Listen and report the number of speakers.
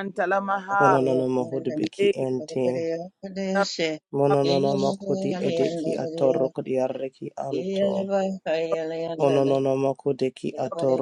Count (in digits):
3